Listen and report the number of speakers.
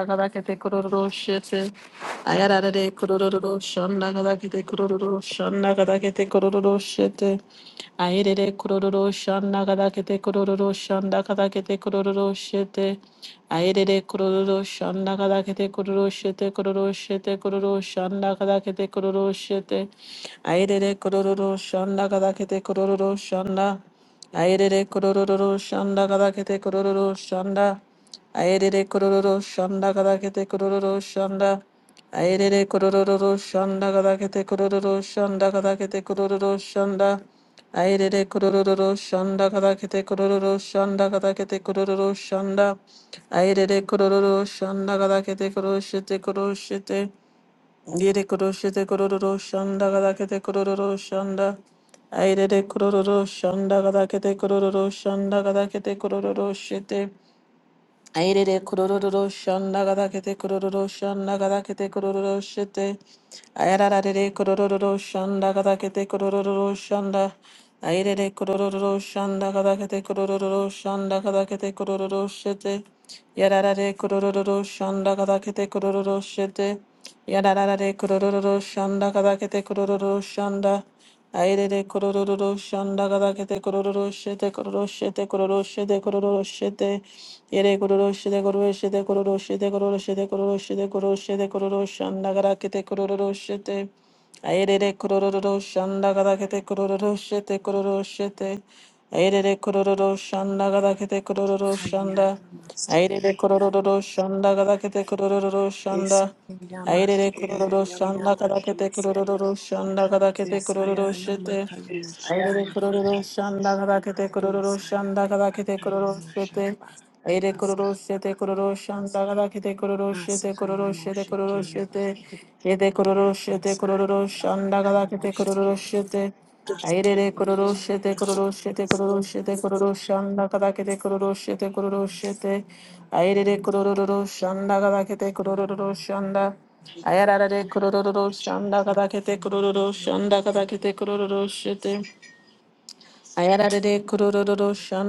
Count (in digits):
2